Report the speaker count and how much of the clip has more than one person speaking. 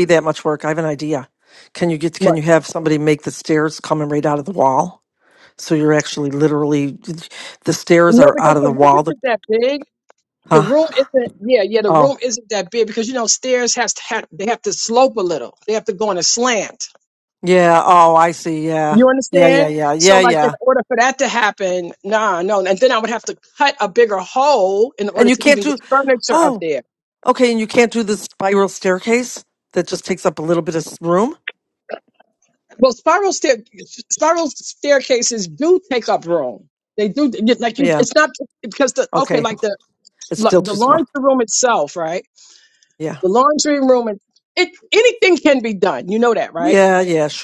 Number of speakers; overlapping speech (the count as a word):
two, about 11%